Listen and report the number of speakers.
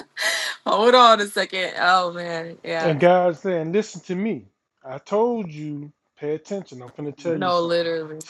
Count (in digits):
2